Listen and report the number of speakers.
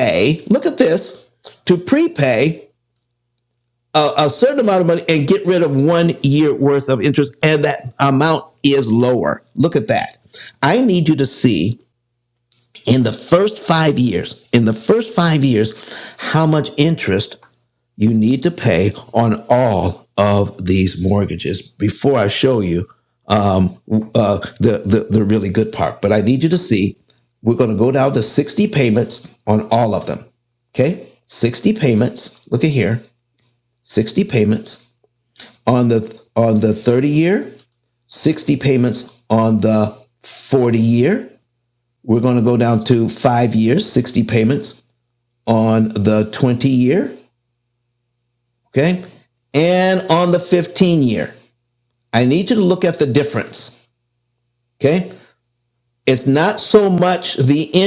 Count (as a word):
one